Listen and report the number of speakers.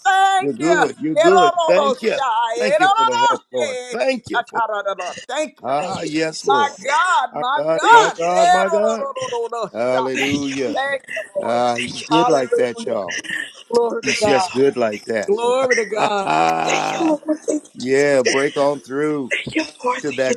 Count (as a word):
three